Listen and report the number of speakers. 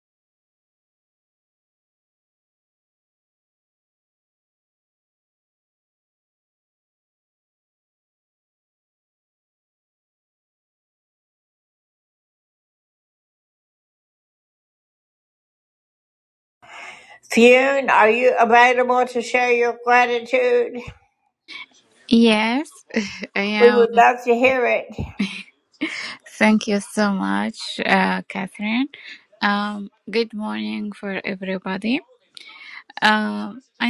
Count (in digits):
2